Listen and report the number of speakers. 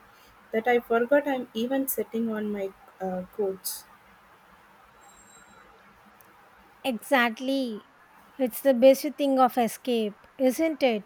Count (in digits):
2